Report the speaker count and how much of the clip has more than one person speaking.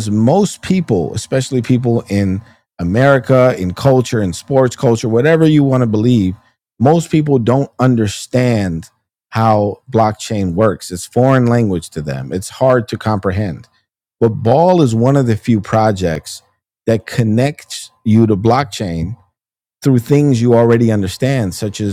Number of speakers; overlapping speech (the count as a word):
one, no overlap